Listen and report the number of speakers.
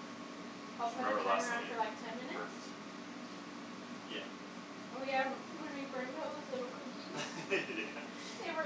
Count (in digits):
2